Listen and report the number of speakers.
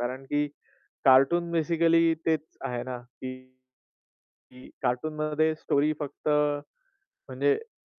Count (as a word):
one